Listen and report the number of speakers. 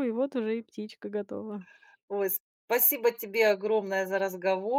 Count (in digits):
2